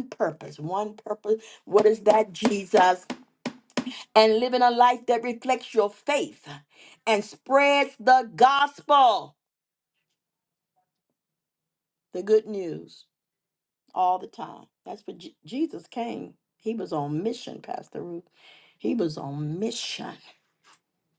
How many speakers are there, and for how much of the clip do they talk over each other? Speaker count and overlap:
1, no overlap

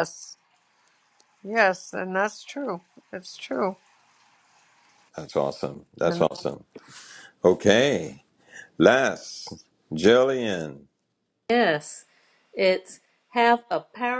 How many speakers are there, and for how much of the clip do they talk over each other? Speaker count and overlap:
3, about 1%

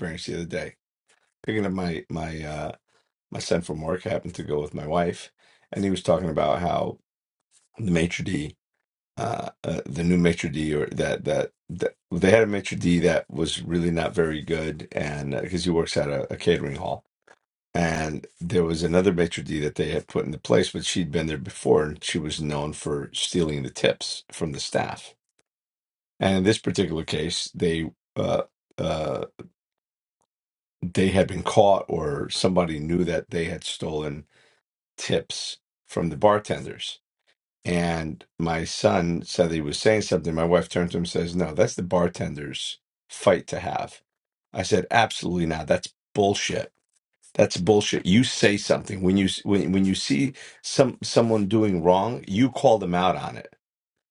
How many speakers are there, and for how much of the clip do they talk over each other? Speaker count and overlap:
1, no overlap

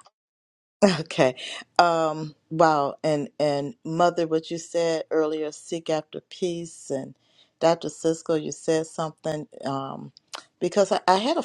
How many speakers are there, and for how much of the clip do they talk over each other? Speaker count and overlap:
1, no overlap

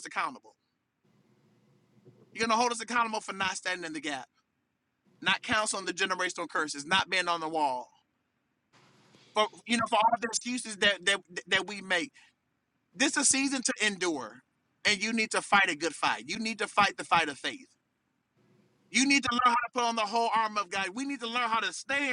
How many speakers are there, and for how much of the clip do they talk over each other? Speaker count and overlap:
1, no overlap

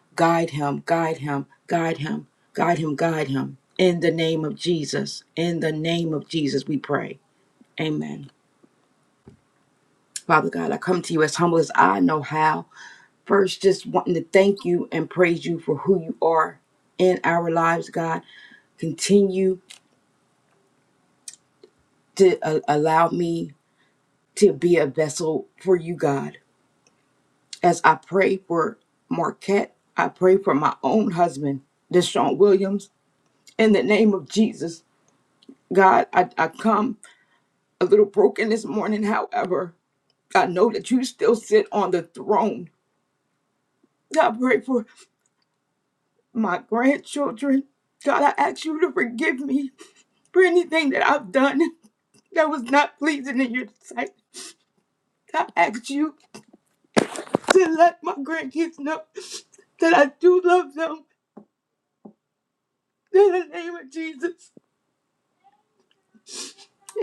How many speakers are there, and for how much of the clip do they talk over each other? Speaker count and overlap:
1, no overlap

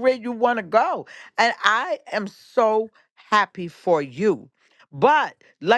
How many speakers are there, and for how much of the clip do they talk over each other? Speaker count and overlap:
1, no overlap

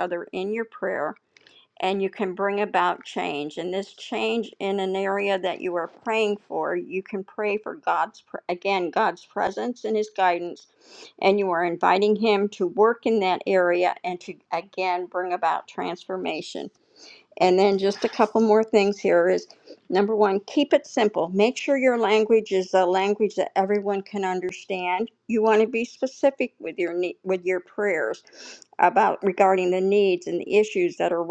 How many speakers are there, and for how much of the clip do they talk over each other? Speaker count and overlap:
1, no overlap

